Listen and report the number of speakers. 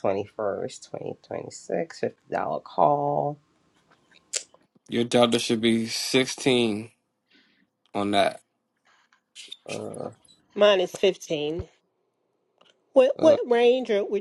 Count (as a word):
three